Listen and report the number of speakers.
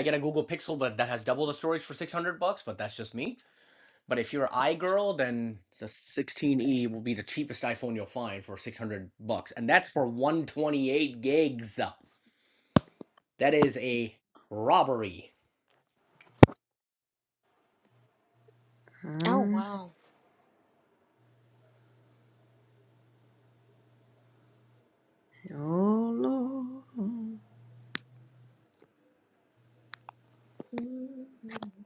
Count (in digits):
3